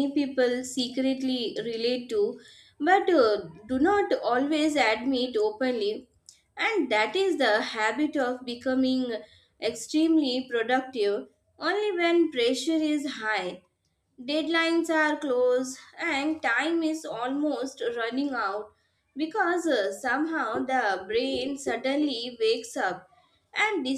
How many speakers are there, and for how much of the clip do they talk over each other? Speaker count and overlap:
1, no overlap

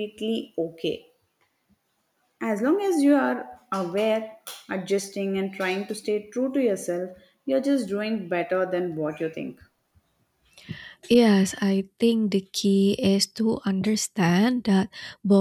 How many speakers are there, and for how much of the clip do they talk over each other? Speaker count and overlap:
2, no overlap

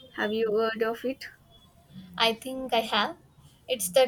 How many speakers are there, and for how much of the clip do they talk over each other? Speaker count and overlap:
2, no overlap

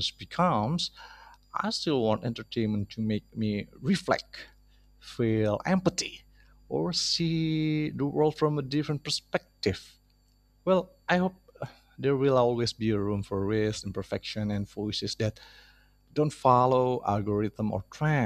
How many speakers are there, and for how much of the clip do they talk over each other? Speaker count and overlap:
1, no overlap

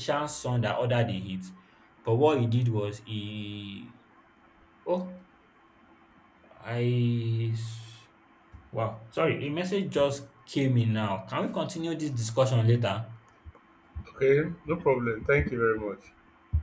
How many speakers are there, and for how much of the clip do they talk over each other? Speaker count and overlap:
2, no overlap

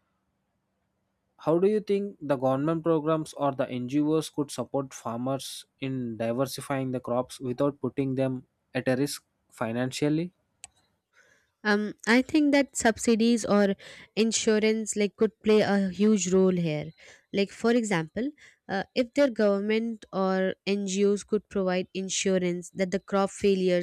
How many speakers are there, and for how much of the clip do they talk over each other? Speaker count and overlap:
2, no overlap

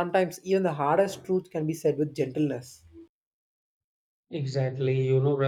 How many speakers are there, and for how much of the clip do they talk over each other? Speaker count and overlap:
2, no overlap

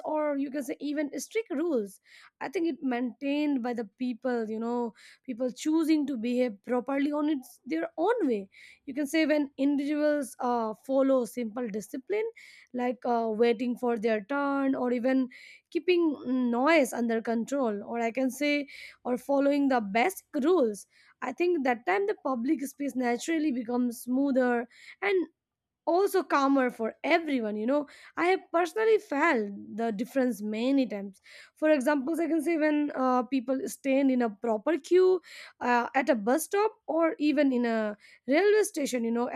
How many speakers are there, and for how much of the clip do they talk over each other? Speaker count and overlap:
1, no overlap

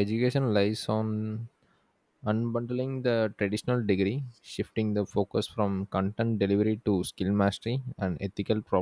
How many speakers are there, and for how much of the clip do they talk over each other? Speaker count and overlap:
1, no overlap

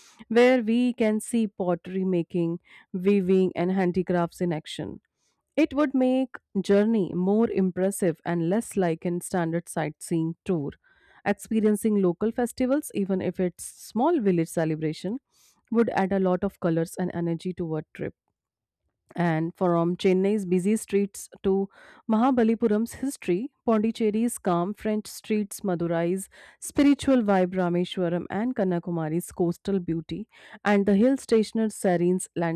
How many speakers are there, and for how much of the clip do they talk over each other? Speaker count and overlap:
1, no overlap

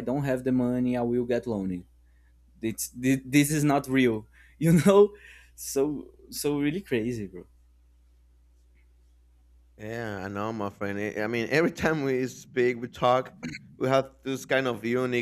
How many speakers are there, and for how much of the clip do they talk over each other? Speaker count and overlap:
2, no overlap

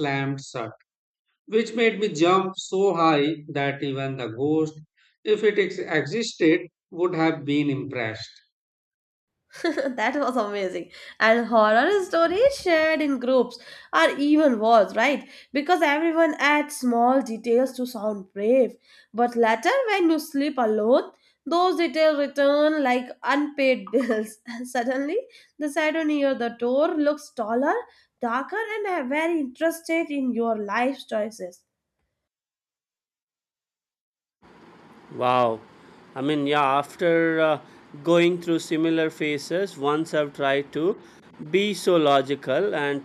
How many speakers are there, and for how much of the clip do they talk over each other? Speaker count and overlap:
3, no overlap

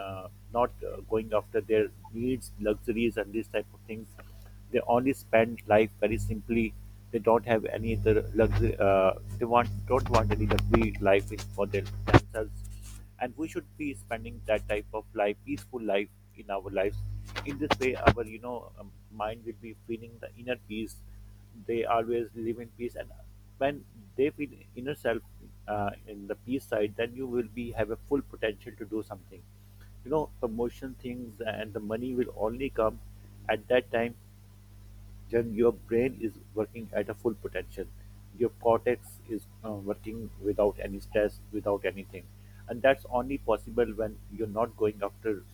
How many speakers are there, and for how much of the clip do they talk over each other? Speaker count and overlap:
1, no overlap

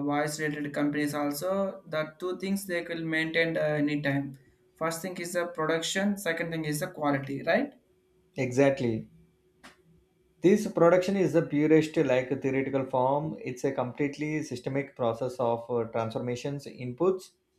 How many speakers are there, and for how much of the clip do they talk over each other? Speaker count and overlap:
2, no overlap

